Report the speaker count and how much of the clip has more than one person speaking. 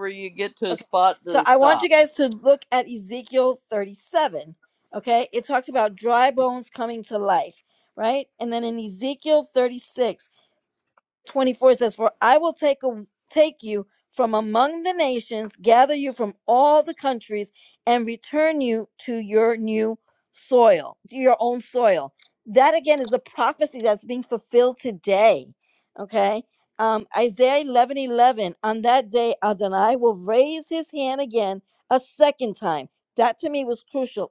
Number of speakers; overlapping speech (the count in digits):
2, about 2%